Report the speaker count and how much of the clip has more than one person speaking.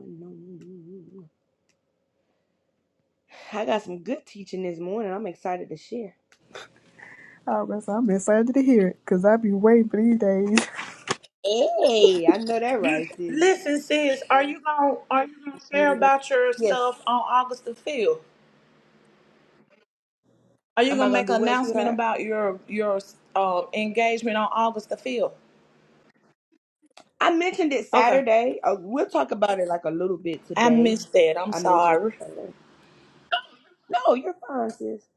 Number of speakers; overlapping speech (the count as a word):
three, about 9%